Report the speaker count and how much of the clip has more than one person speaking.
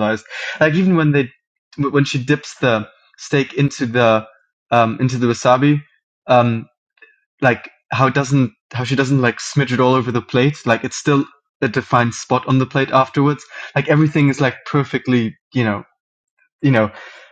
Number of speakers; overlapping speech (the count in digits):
1, no overlap